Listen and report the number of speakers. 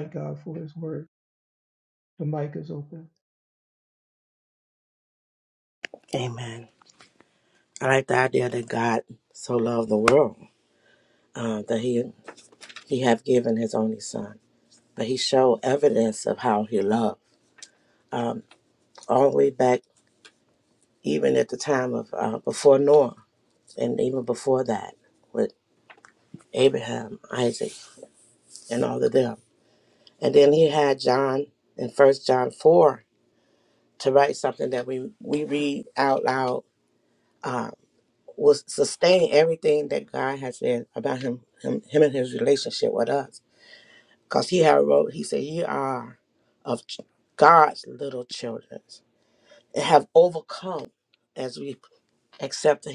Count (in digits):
2